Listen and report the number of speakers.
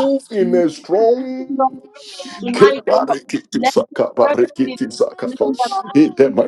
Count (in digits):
2